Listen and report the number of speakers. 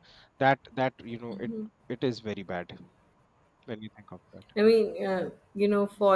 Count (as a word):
two